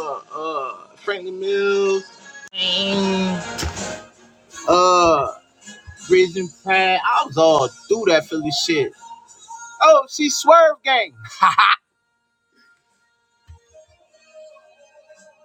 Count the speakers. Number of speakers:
1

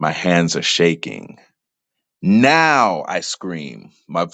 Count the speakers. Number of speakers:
1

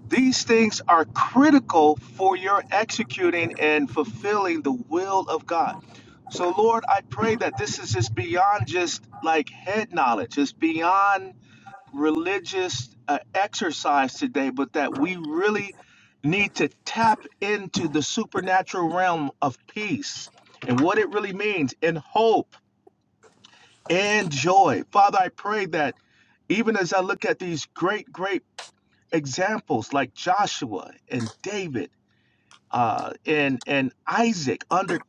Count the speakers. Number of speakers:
1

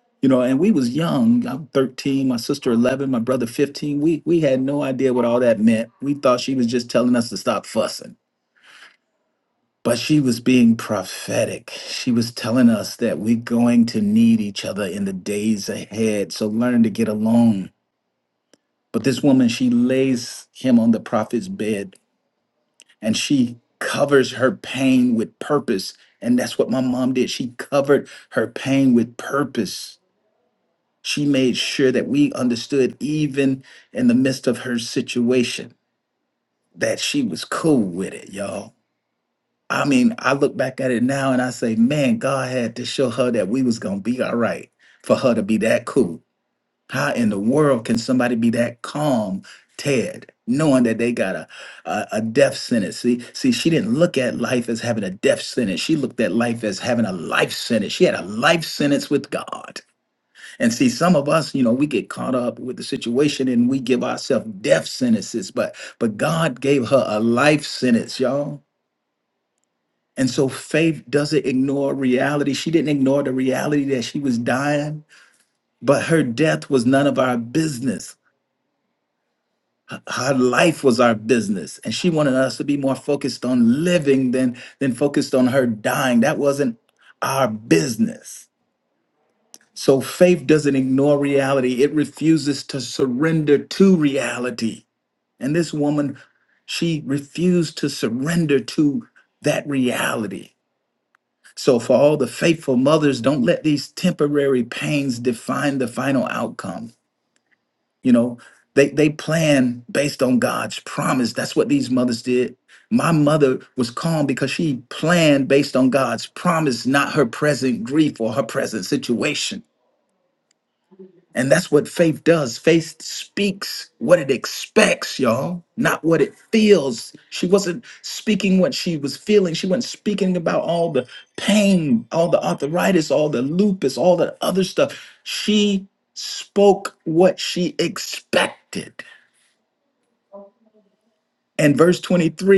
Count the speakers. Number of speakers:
1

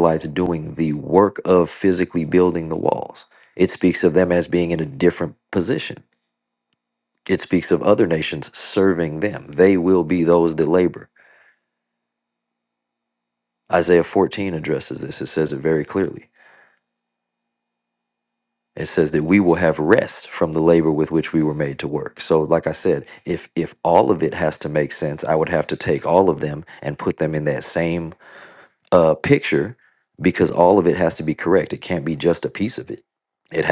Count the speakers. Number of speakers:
1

